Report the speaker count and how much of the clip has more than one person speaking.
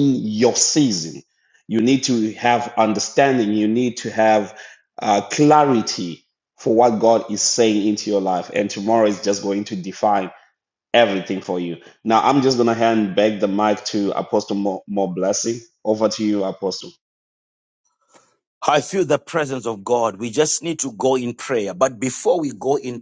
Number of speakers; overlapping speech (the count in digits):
2, no overlap